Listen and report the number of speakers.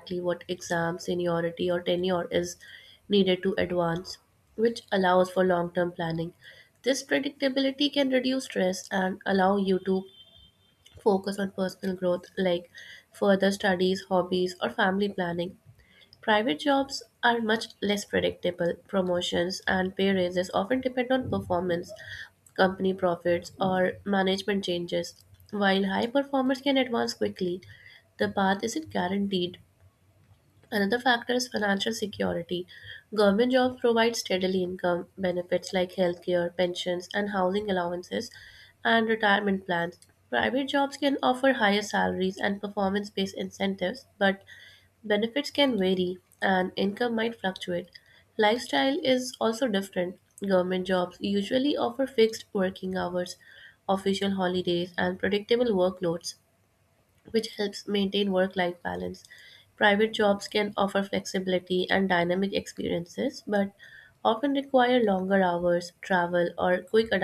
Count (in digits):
1